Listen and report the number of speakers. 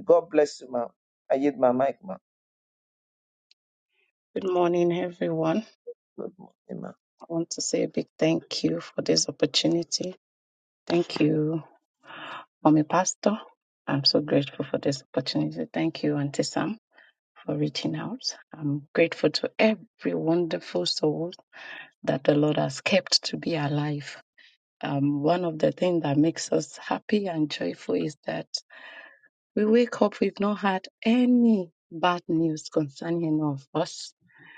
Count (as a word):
two